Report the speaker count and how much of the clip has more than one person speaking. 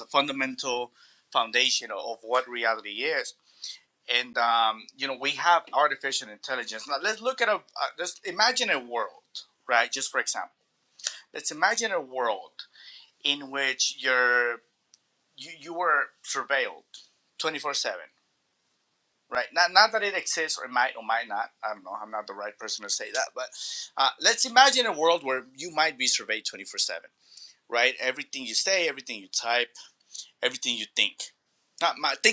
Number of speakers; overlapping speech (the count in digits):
1, no overlap